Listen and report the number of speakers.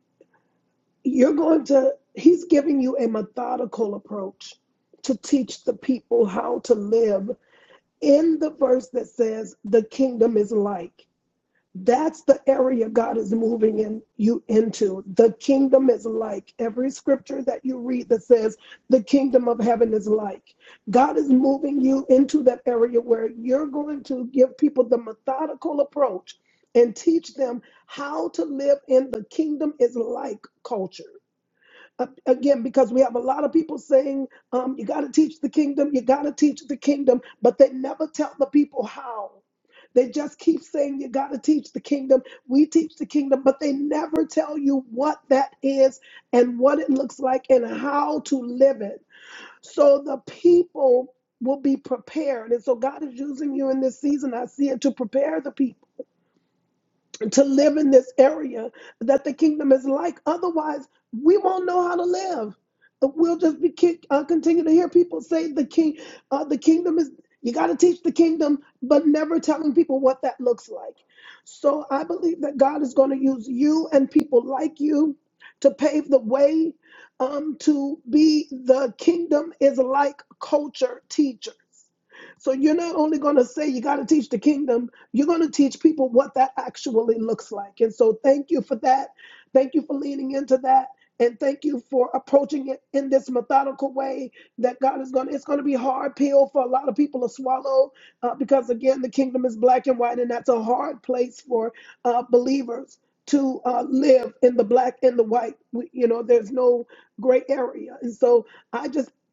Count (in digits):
1